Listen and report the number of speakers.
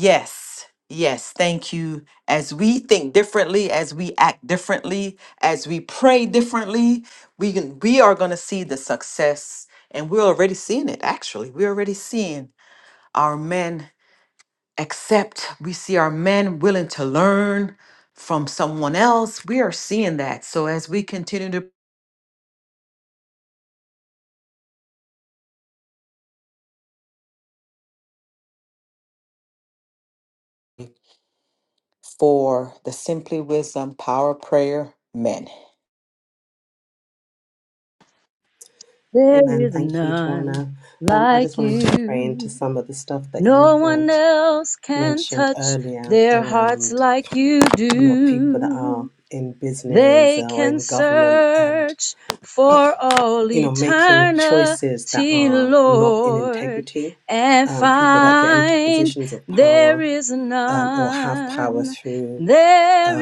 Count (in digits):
3